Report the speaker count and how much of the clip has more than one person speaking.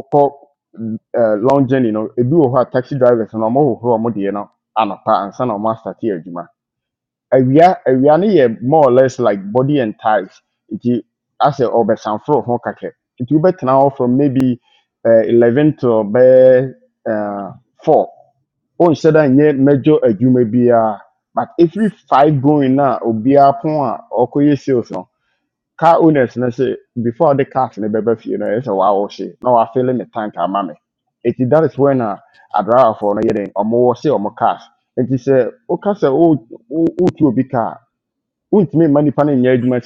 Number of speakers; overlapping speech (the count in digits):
1, no overlap